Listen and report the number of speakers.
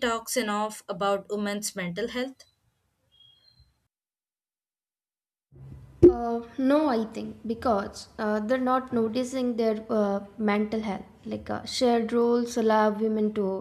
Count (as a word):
two